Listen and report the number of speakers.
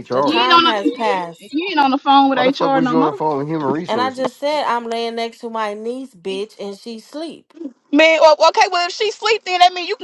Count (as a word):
three